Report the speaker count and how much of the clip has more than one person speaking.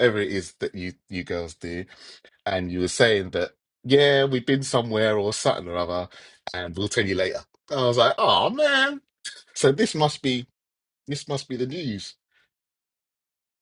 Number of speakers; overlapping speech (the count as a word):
one, no overlap